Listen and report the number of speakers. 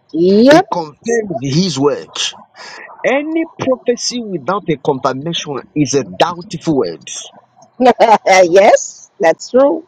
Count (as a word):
two